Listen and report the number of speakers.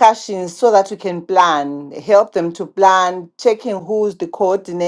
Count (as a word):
one